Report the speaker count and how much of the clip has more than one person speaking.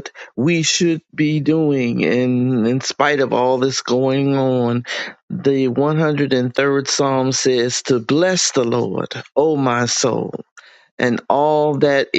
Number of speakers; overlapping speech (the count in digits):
1, no overlap